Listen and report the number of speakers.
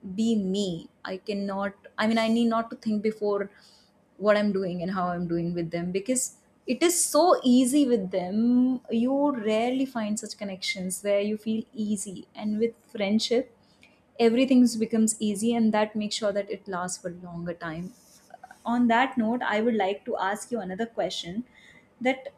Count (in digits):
1